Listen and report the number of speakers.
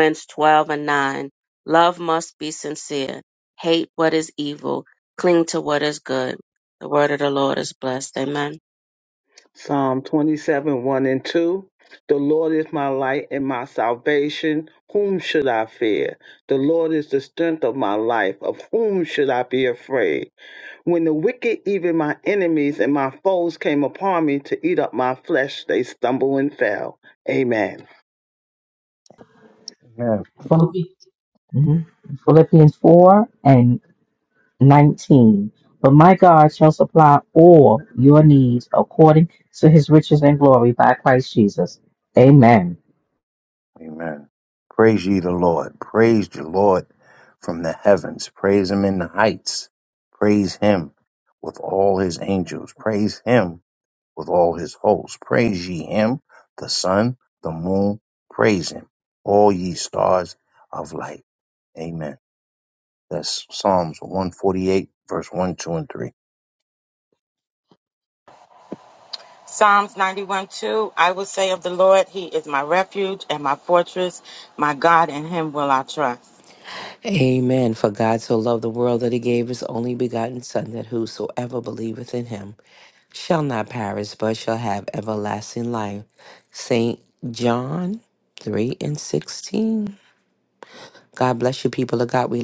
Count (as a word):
six